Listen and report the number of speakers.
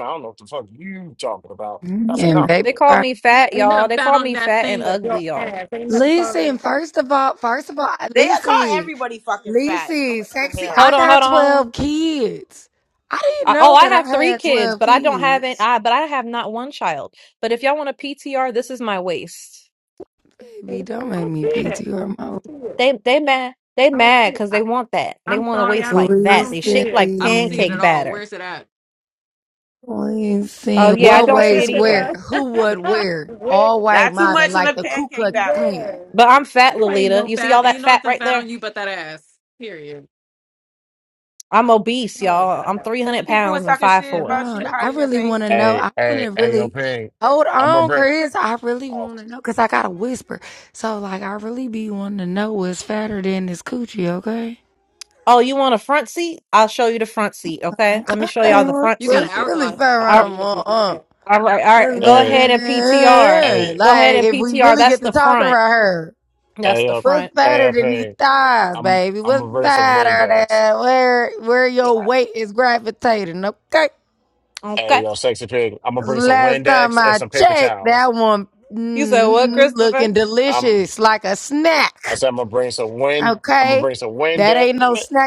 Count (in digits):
5